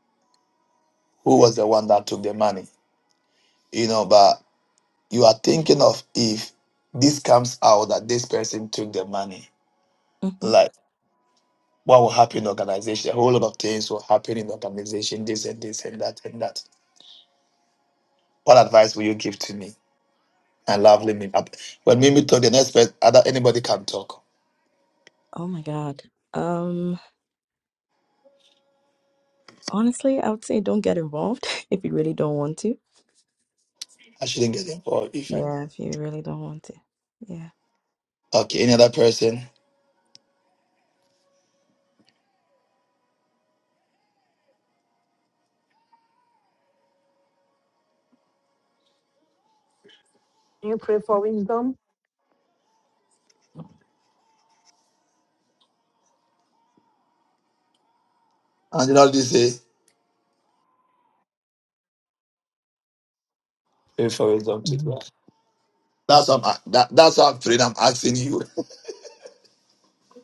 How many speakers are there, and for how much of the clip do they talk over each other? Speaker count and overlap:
three, about 1%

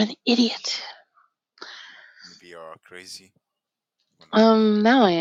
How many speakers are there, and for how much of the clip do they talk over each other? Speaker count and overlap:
two, about 7%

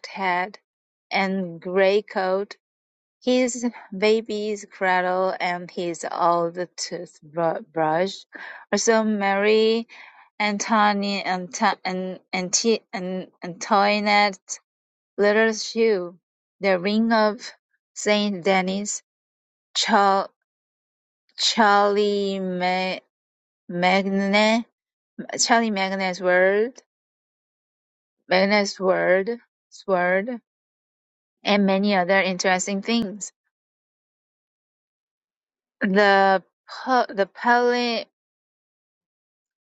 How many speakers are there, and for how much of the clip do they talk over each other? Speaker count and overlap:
one, no overlap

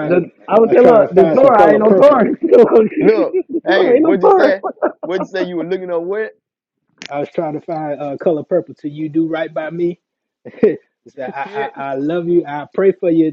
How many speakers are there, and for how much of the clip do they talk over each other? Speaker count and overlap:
three, about 29%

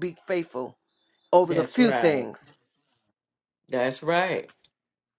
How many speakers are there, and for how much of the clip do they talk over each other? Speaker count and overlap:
two, about 15%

